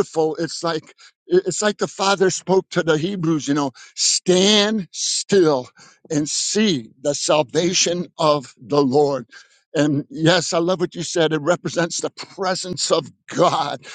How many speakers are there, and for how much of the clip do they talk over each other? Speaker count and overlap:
1, no overlap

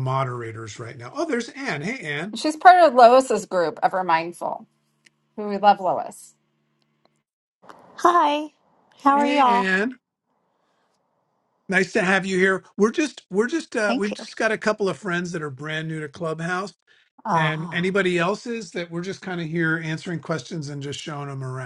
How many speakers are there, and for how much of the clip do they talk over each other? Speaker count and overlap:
3, about 7%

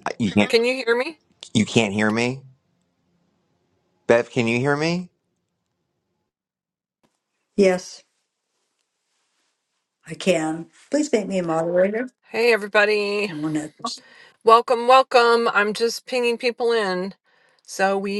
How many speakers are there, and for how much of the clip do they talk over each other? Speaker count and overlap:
3, about 1%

